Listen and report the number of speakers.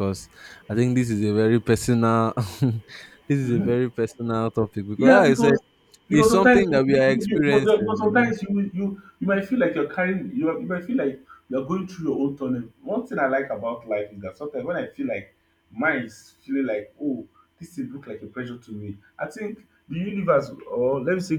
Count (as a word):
two